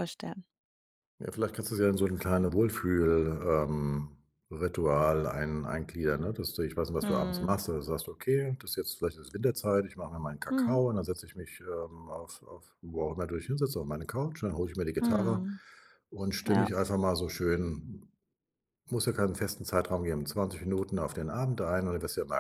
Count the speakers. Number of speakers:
2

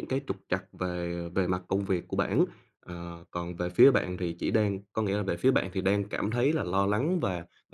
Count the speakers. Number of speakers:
1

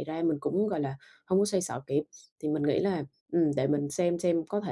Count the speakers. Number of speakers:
1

